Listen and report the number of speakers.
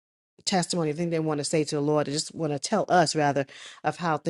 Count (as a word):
one